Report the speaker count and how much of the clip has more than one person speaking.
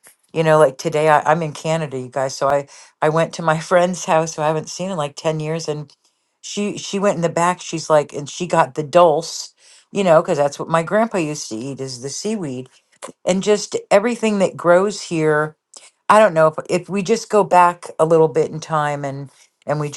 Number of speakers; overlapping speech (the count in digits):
1, no overlap